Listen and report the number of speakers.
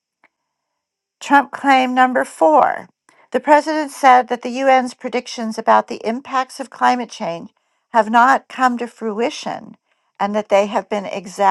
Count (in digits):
1